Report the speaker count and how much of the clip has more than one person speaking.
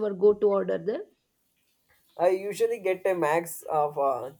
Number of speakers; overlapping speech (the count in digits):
2, no overlap